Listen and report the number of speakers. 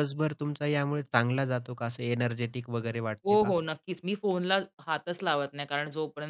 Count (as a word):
two